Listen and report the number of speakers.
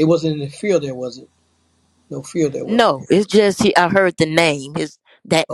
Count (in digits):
2